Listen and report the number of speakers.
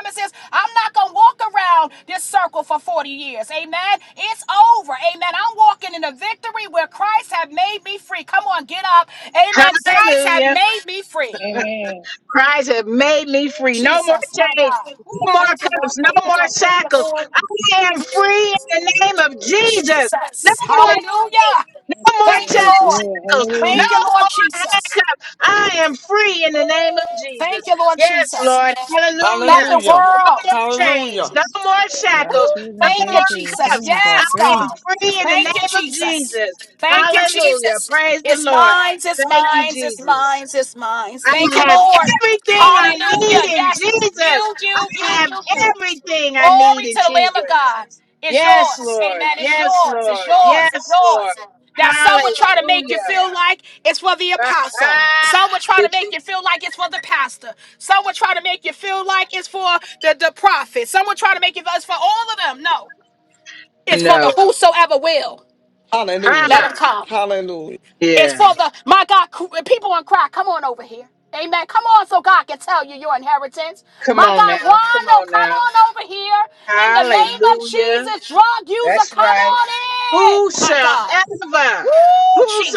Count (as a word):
four